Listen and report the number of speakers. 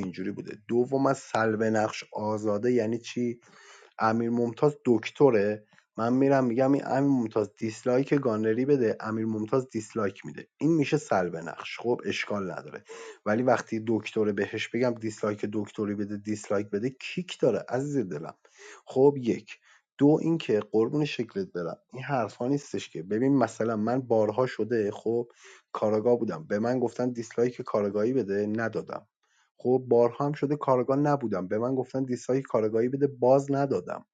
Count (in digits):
1